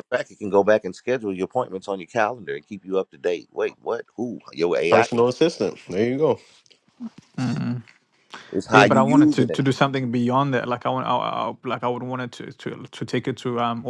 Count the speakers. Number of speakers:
three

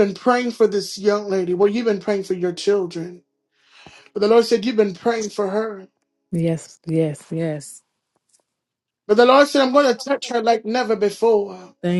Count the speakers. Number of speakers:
two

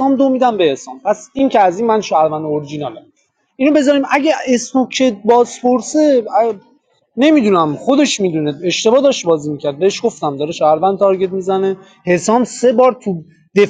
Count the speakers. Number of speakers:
one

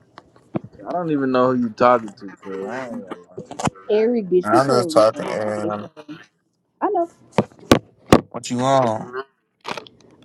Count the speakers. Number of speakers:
three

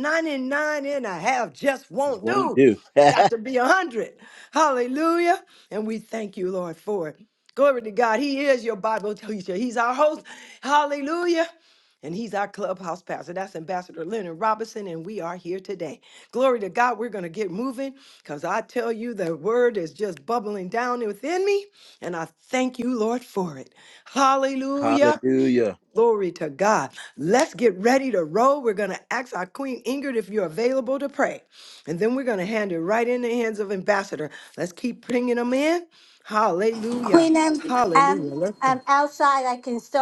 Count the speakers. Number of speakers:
three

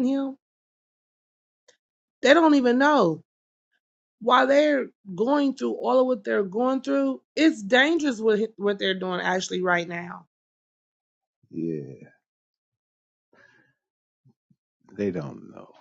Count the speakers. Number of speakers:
two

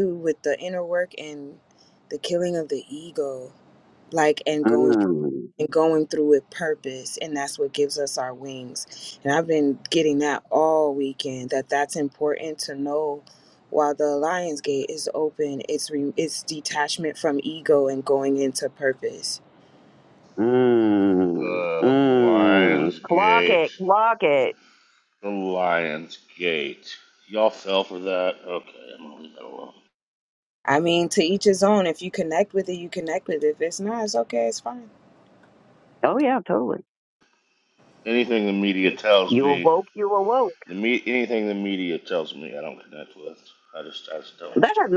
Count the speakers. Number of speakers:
three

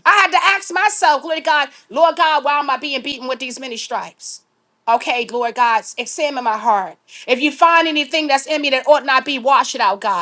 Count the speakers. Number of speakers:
one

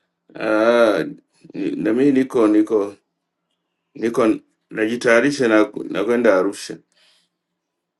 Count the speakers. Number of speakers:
one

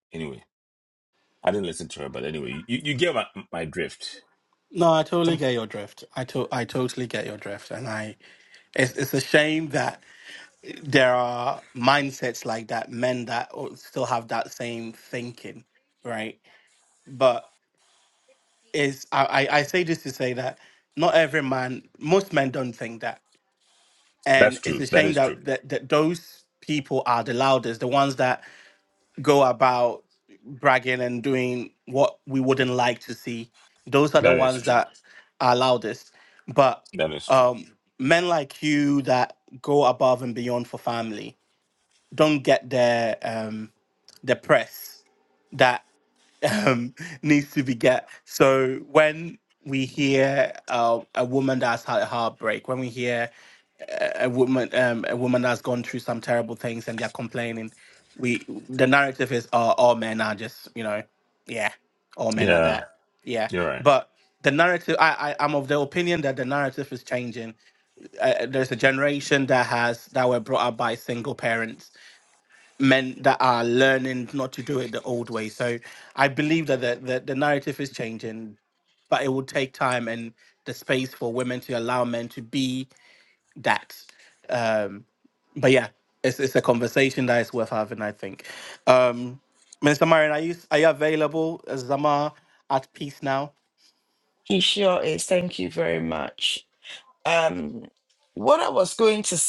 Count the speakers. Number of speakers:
three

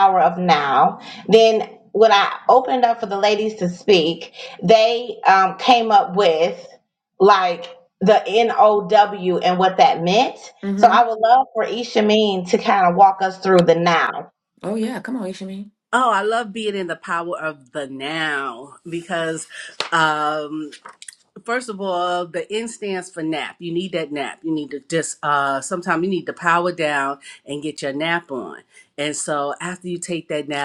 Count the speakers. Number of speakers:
three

